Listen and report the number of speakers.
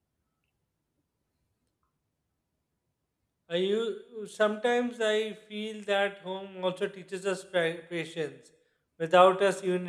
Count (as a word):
one